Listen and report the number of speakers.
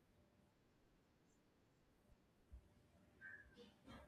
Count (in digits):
0